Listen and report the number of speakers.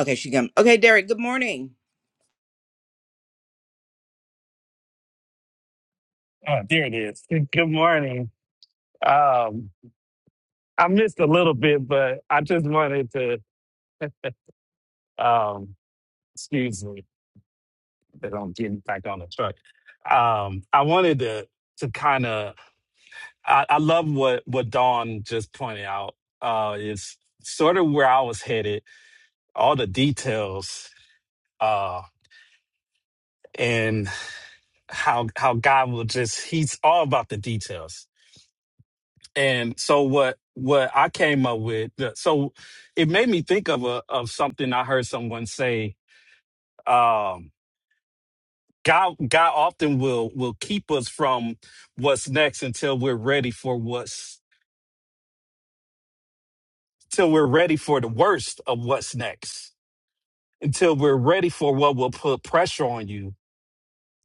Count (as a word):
two